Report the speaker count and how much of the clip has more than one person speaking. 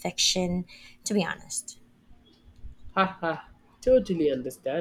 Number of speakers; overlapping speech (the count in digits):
2, no overlap